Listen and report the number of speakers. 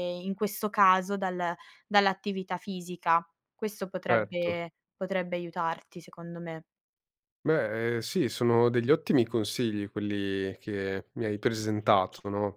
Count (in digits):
2